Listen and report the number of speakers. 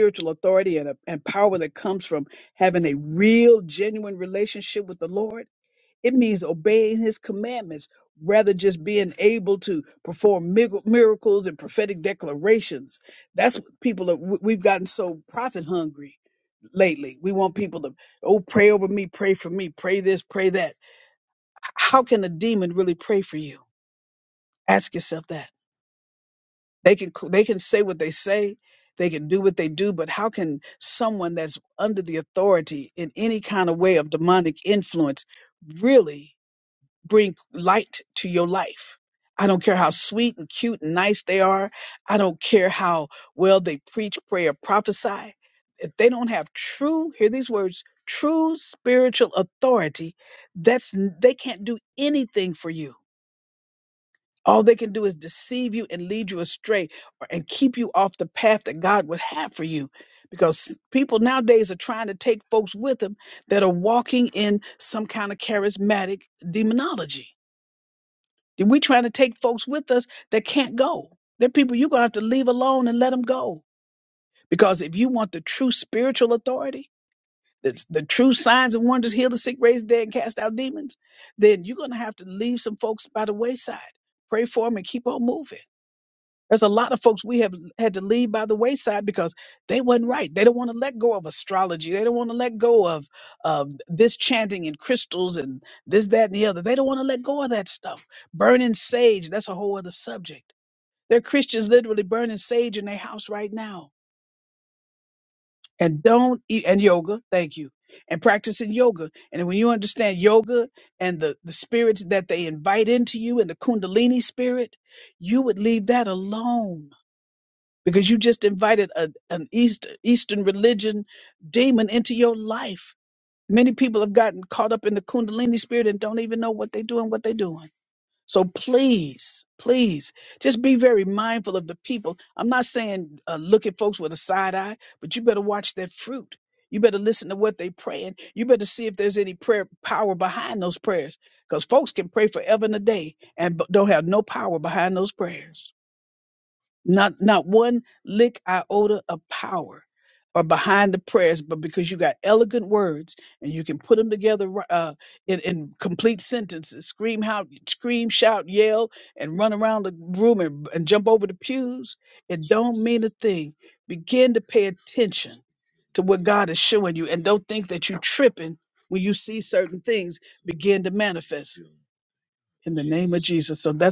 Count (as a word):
one